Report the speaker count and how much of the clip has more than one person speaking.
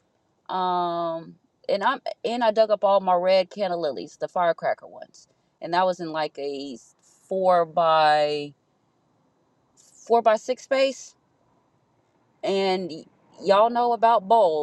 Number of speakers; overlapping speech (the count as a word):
one, no overlap